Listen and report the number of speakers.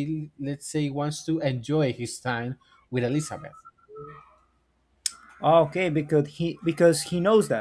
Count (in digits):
2